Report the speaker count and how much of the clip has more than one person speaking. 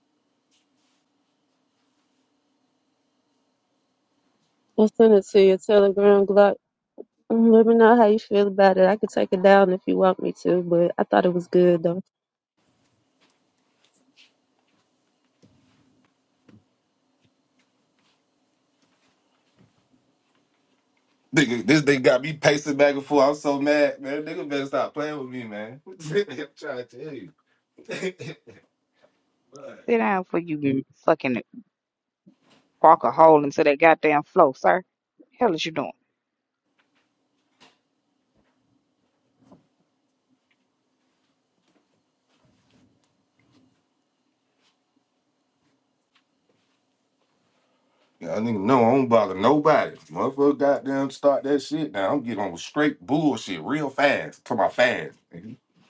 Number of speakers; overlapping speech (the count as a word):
three, no overlap